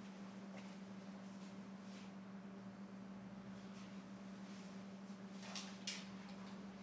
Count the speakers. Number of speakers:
0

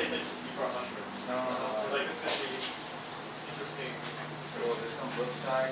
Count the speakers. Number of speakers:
2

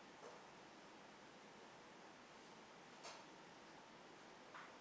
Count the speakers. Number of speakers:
0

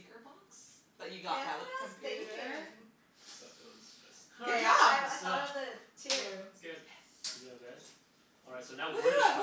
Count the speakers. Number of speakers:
4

